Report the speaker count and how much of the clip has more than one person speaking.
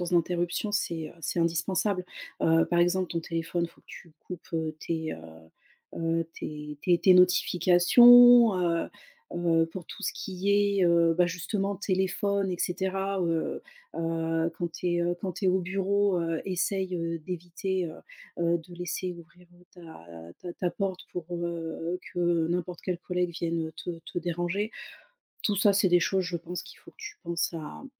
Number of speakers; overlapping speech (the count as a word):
one, no overlap